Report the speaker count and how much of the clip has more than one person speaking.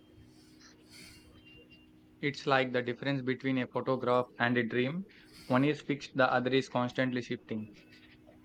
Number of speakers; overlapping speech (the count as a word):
one, no overlap